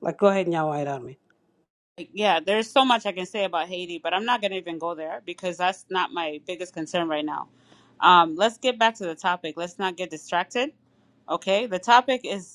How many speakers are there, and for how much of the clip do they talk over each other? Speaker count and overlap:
2, no overlap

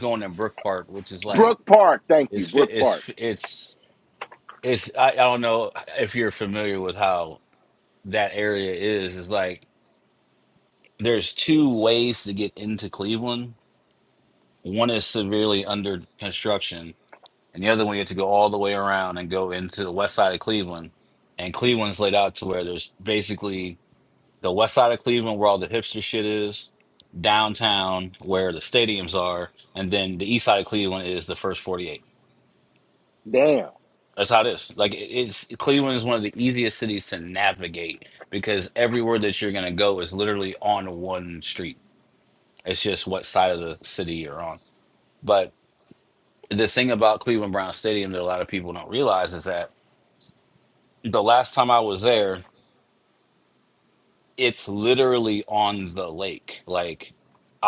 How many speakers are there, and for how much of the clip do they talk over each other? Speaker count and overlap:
2, about 2%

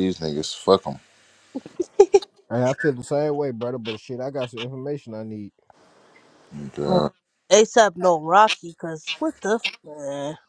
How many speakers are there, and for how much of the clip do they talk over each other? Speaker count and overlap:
3, about 1%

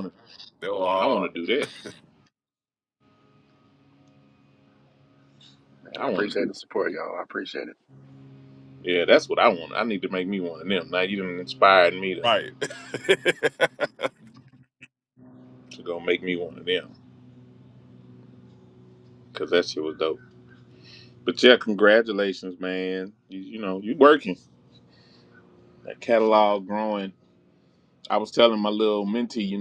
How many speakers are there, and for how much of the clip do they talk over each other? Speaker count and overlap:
3, about 3%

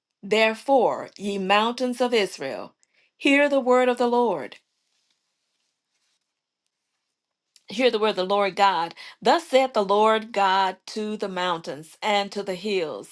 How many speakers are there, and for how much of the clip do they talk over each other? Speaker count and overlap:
1, no overlap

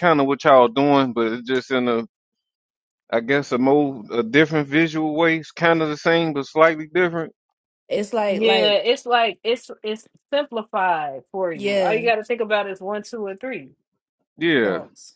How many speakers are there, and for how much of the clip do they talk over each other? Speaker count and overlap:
3, about 8%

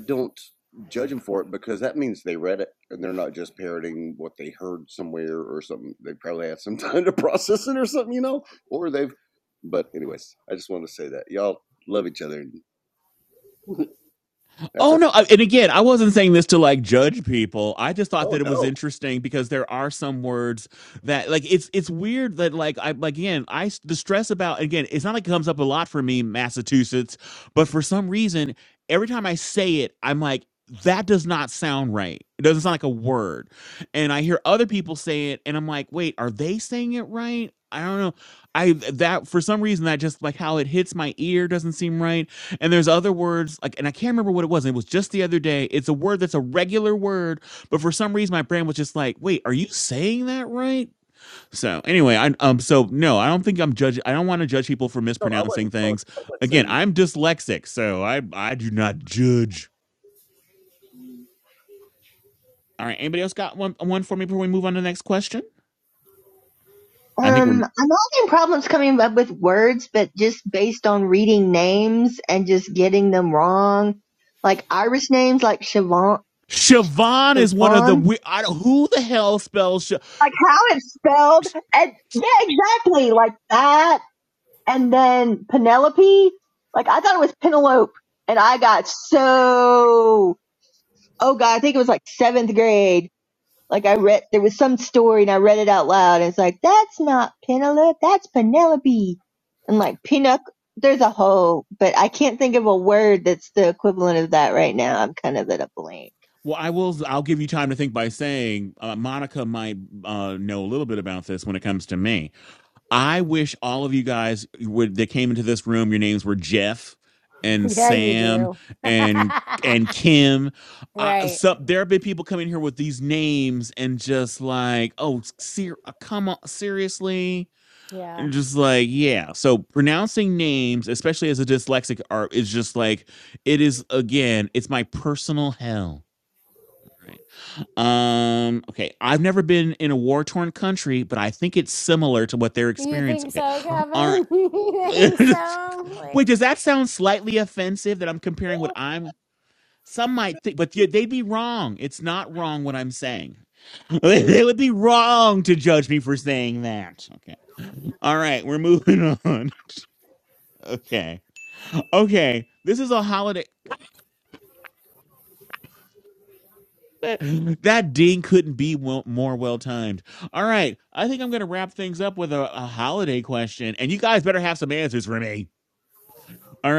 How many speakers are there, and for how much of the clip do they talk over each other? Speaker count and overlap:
4, about 3%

